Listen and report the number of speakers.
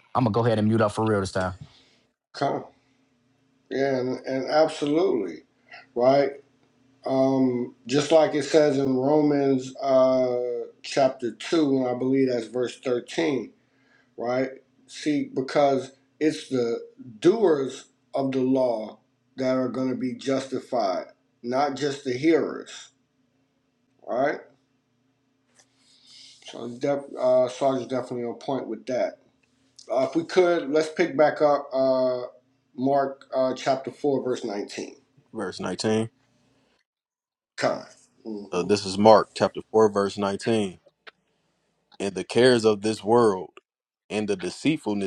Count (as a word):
three